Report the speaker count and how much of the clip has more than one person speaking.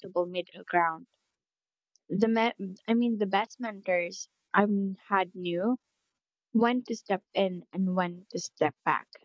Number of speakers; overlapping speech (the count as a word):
one, no overlap